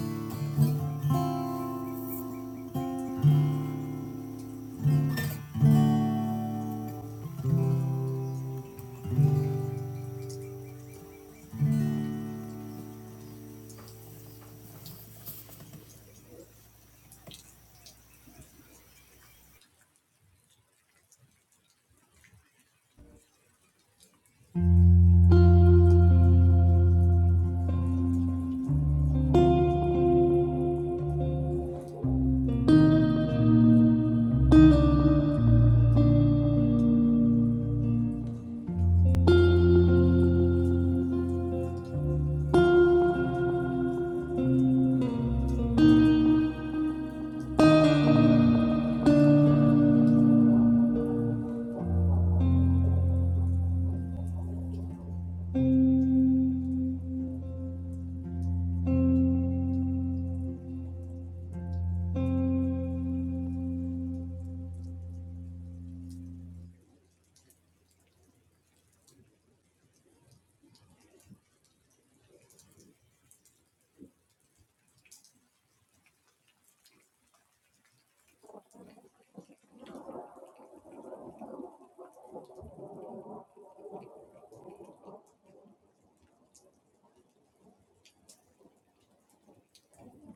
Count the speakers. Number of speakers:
zero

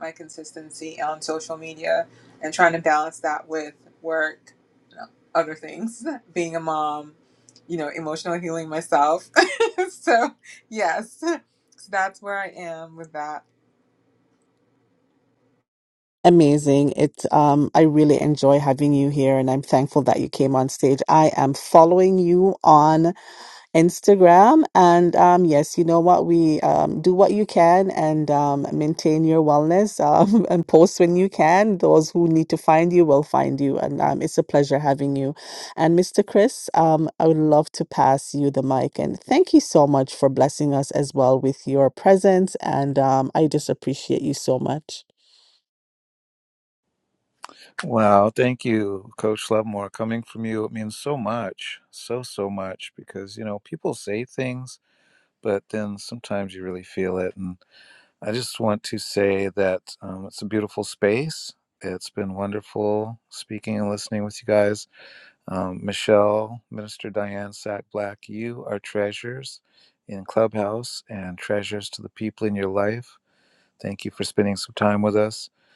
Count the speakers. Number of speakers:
three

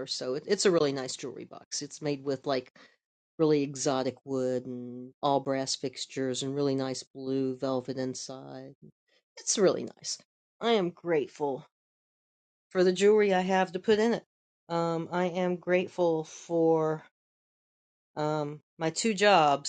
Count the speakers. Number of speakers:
one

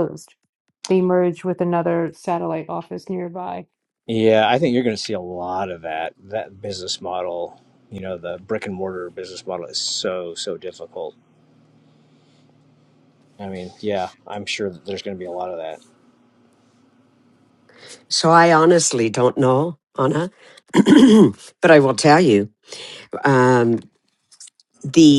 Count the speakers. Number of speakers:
three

